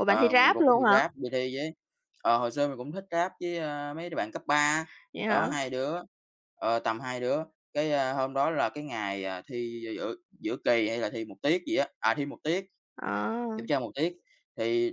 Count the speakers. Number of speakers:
two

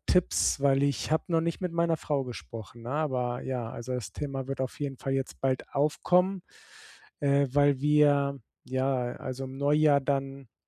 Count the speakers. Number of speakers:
one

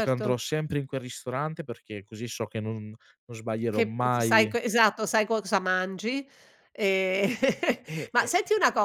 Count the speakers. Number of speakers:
two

